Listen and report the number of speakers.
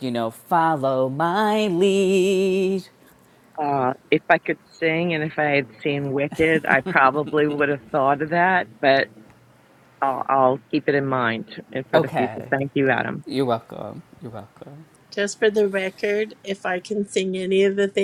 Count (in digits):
3